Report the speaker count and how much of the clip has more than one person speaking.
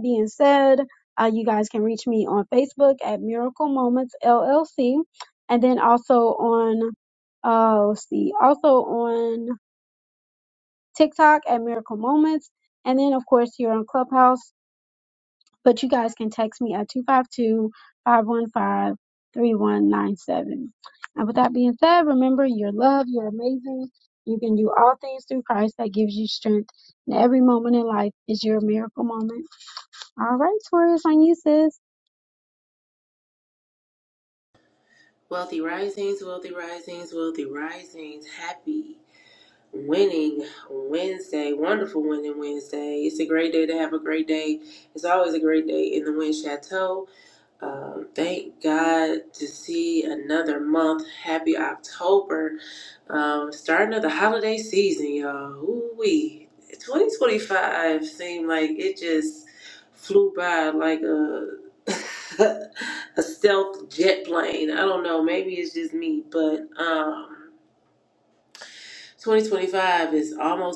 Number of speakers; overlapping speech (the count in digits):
2, no overlap